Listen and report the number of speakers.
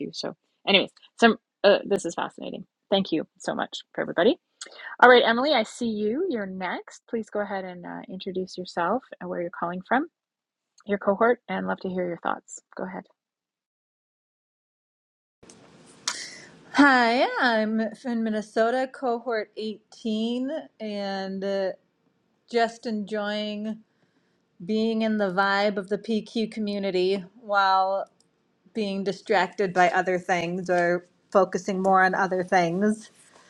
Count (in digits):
2